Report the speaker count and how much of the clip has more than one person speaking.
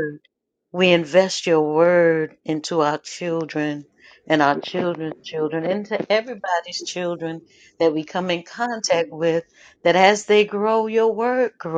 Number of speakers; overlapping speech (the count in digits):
1, no overlap